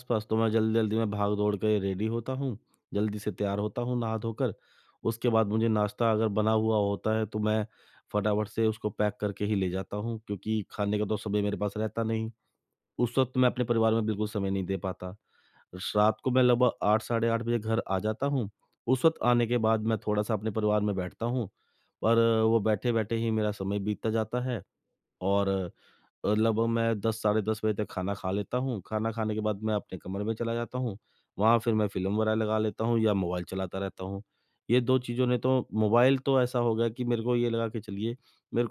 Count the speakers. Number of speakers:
one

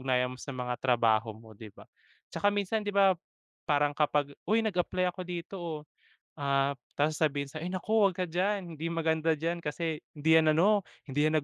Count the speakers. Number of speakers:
one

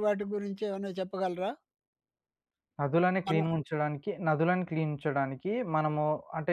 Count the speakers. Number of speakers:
two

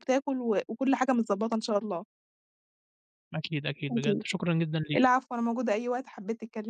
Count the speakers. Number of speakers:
two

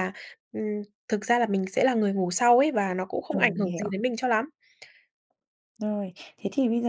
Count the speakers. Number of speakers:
two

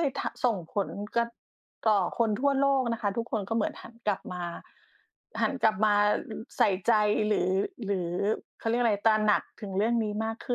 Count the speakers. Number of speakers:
one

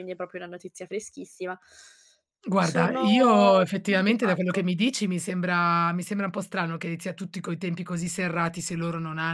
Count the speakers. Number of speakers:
two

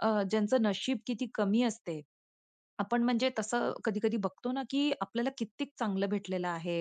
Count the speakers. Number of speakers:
one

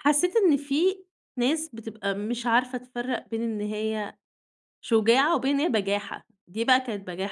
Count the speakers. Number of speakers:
one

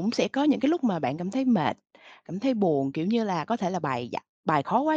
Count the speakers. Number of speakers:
one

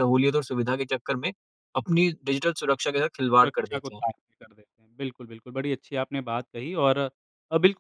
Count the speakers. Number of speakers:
two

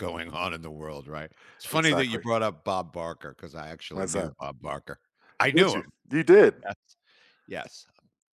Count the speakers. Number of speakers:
two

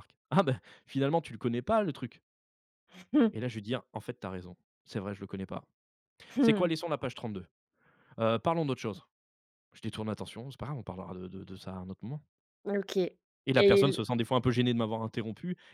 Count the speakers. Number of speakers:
two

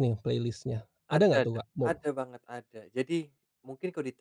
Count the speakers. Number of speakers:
two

